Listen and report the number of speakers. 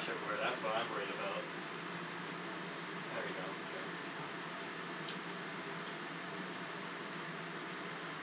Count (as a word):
one